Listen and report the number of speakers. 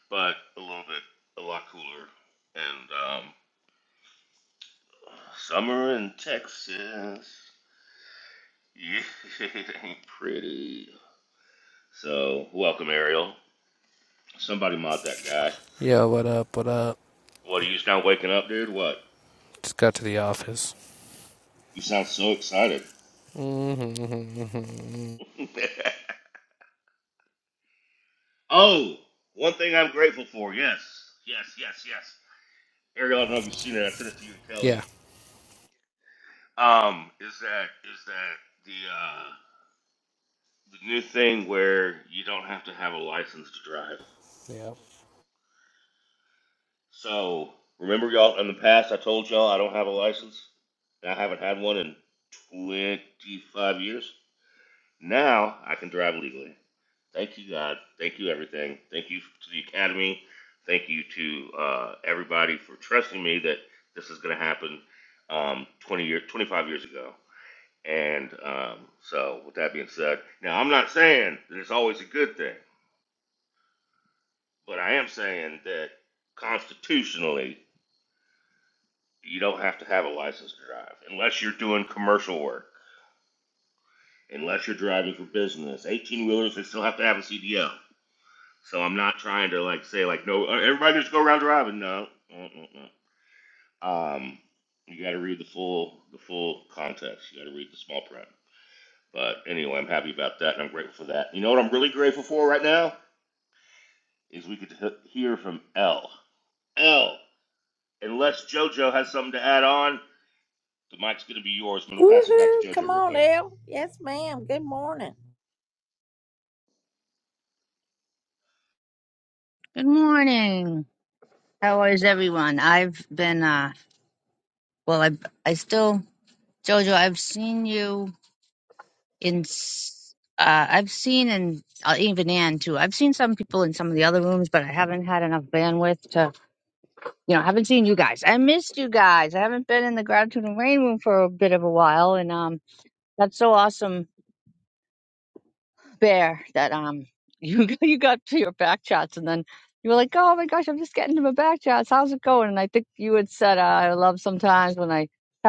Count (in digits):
4